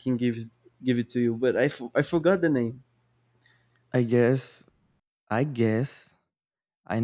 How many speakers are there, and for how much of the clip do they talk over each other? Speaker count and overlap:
two, no overlap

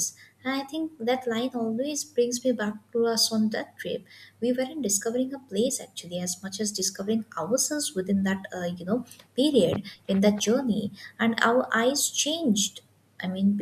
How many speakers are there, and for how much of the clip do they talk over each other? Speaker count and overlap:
one, no overlap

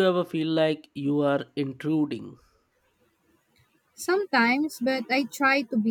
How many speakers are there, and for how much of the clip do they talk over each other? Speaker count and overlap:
two, no overlap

